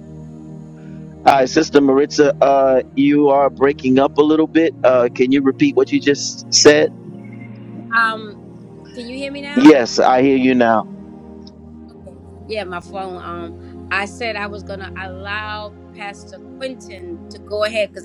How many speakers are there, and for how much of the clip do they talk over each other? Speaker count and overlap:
2, about 1%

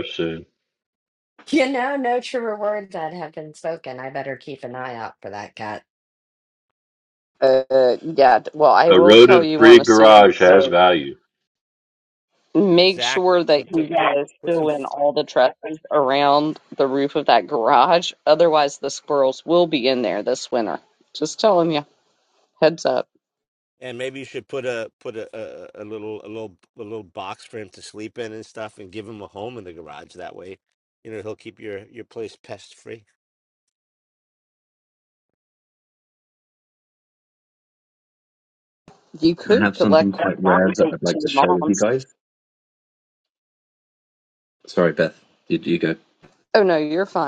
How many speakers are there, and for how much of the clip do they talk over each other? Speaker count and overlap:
5, about 13%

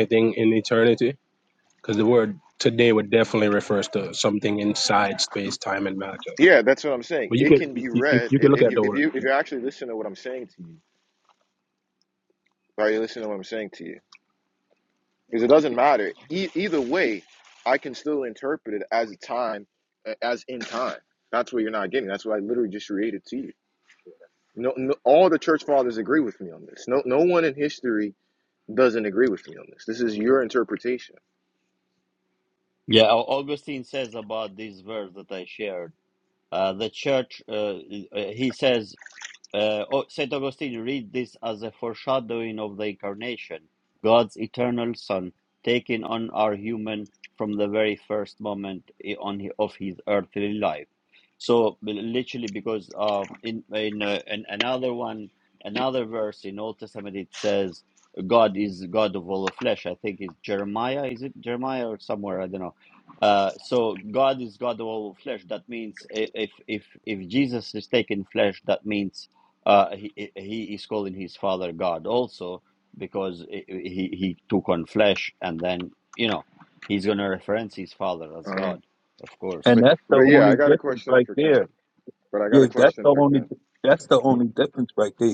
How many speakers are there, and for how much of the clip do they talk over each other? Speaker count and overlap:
4, about 5%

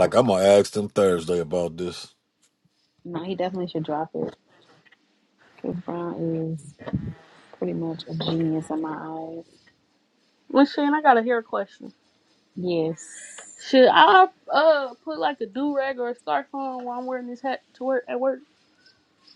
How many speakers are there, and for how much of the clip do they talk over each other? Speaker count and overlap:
3, no overlap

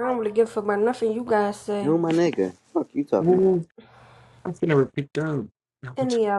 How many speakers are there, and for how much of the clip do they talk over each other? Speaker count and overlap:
3, about 5%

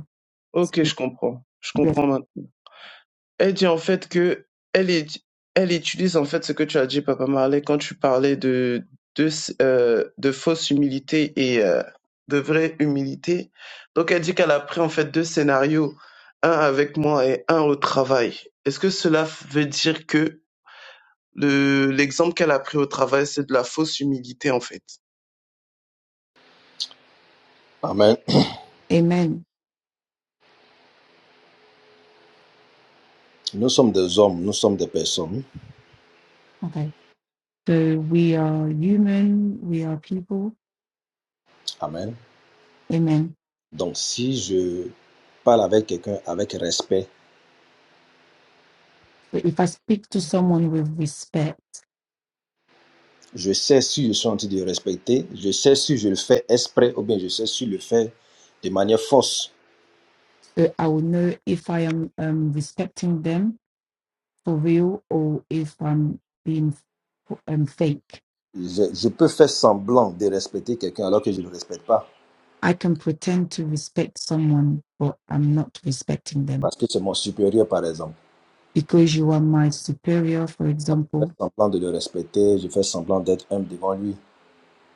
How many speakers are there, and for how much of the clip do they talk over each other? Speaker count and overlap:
3, about 1%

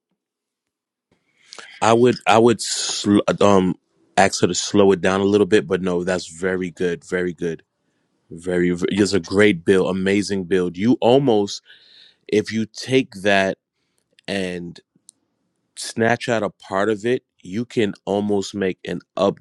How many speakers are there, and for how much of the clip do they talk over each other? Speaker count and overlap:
1, no overlap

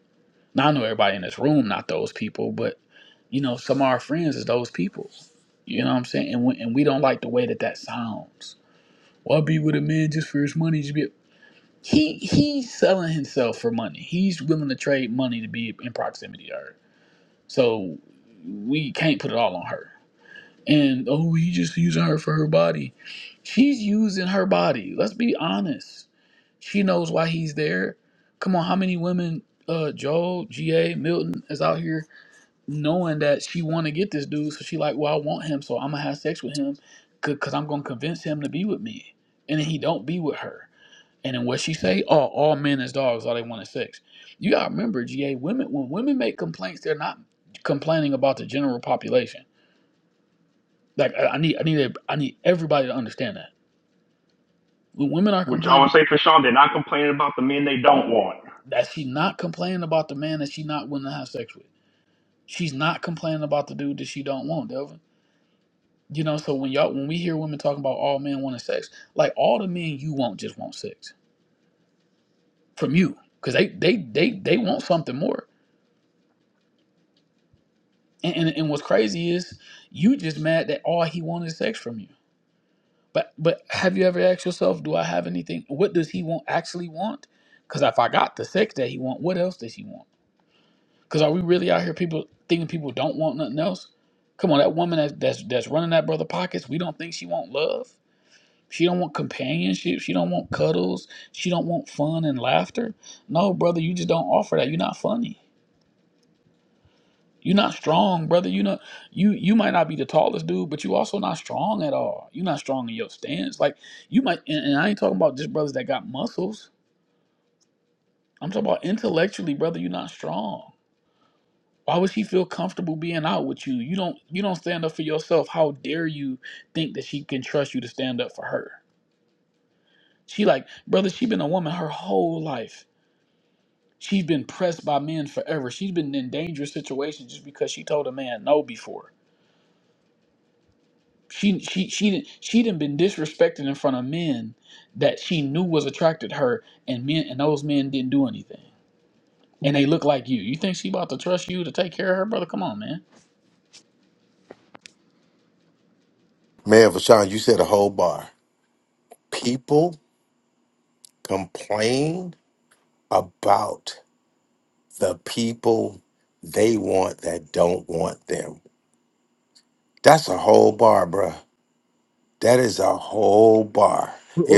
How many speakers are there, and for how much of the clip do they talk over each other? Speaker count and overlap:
3, under 1%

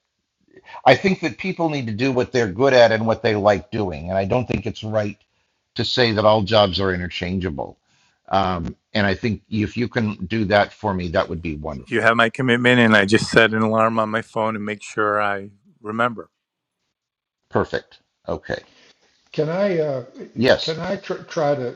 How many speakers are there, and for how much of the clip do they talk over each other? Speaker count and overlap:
3, about 1%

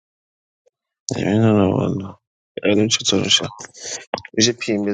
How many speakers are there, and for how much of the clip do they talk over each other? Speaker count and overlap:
1, no overlap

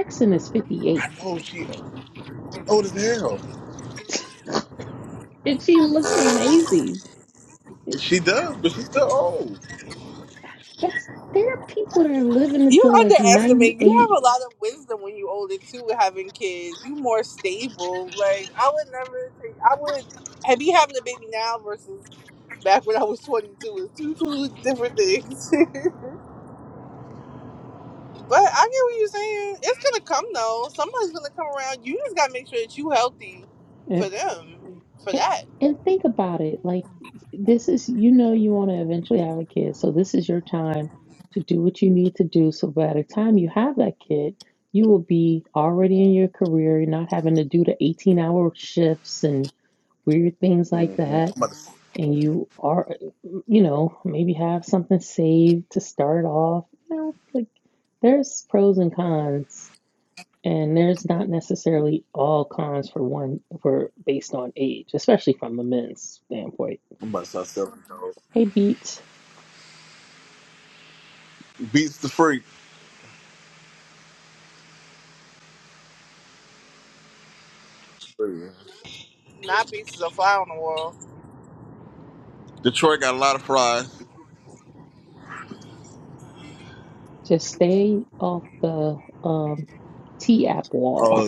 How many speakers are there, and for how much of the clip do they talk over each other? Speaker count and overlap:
3, about 3%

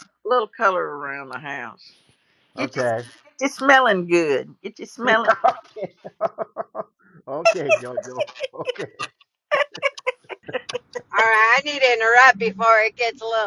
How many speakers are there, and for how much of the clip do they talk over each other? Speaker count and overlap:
3, about 4%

